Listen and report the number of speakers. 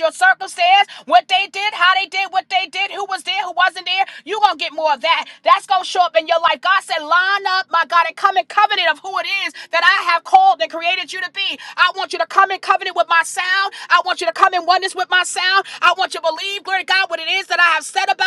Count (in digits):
1